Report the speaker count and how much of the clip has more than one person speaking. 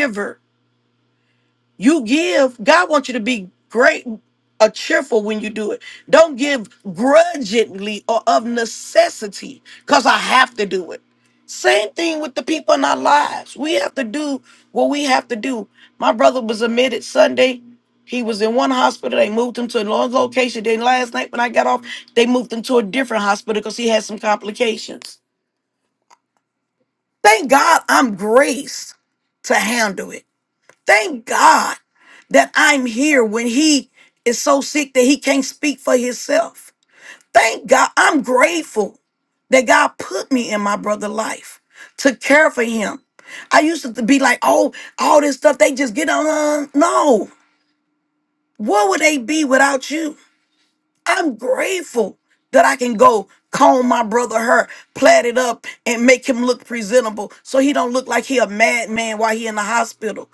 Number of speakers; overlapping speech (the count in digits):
1, no overlap